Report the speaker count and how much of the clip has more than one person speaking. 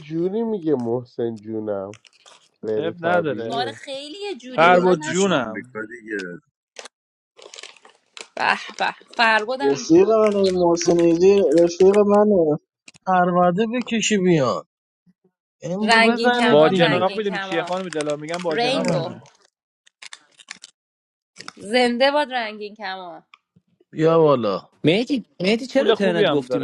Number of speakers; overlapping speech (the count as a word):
seven, about 21%